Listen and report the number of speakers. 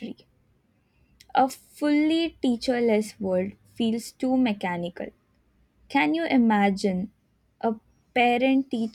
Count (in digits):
1